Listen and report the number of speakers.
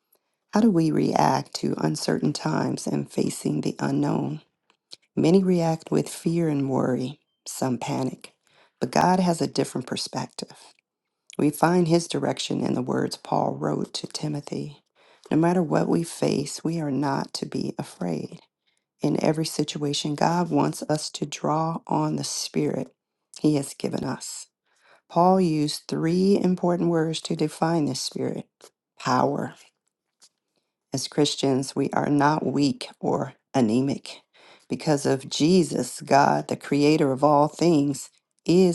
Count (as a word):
one